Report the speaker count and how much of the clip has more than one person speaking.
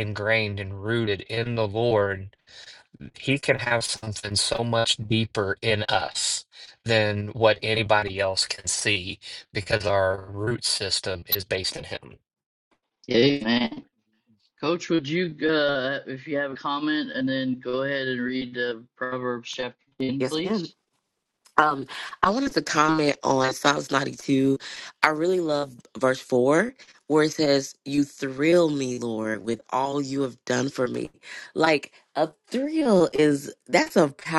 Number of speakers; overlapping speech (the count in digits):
3, about 1%